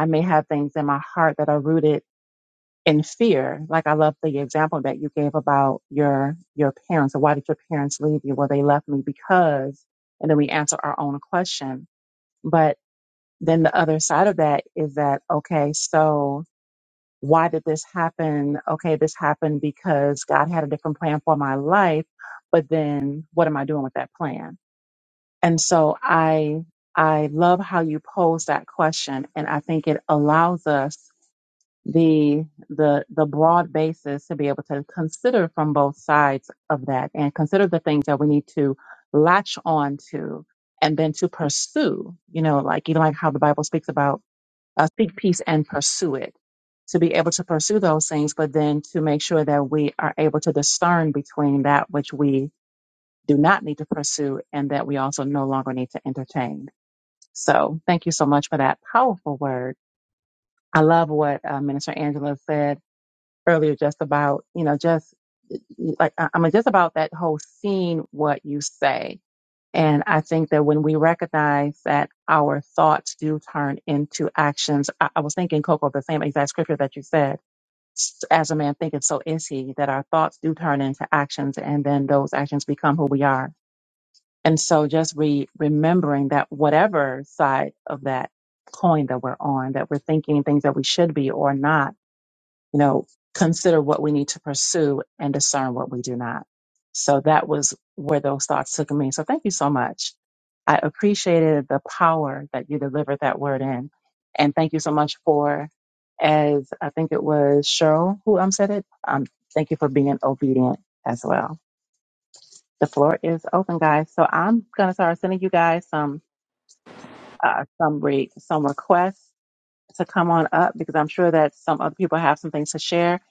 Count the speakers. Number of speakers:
1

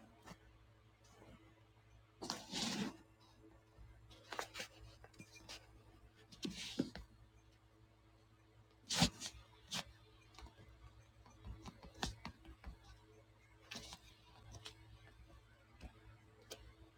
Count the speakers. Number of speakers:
0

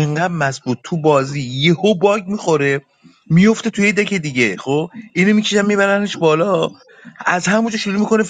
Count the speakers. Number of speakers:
1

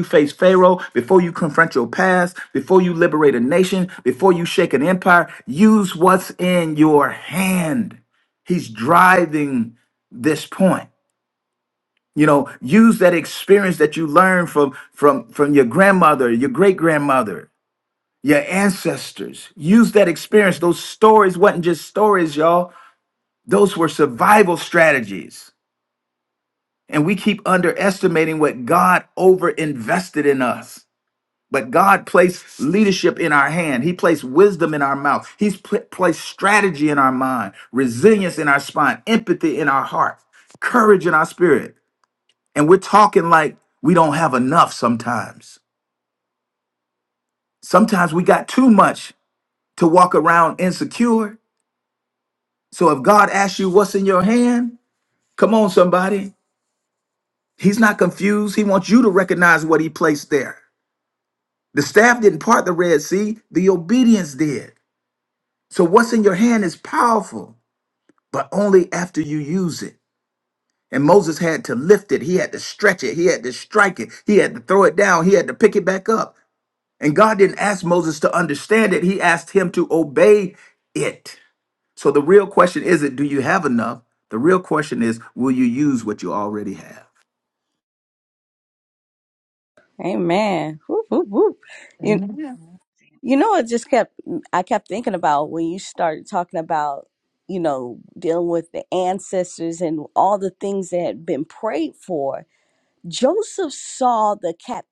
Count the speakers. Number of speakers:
2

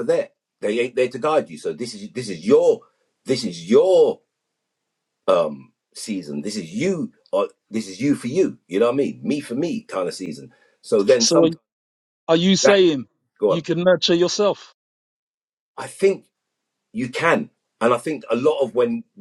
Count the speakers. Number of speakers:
2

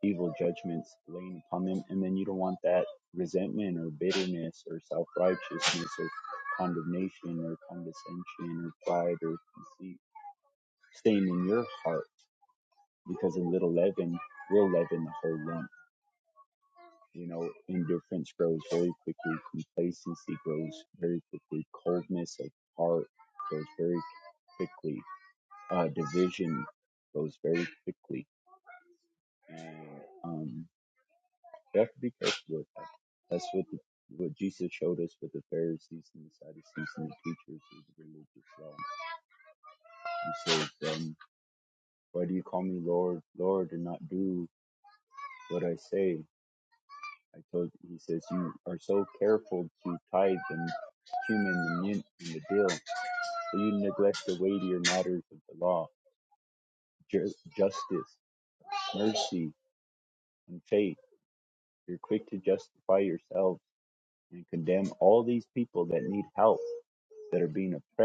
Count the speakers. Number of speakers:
1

